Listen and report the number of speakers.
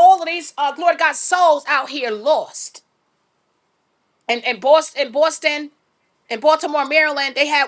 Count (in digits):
1